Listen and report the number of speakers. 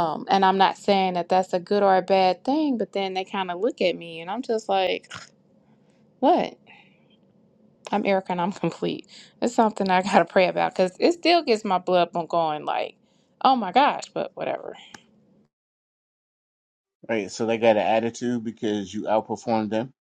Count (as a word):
two